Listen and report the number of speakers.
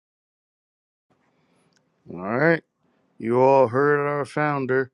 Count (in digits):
1